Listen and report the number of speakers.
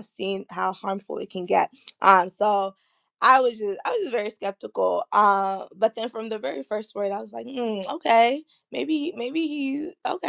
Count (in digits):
1